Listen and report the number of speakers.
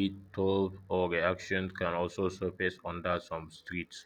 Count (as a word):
one